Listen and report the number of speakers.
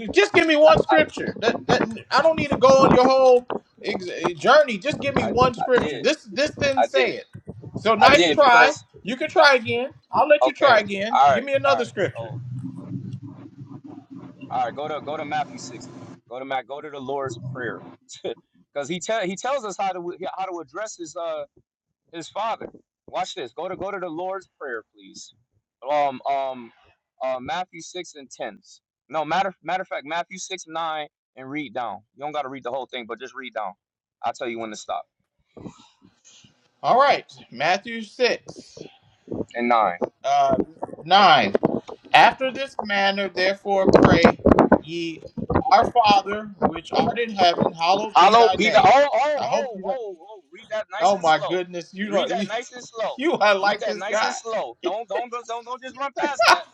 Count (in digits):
2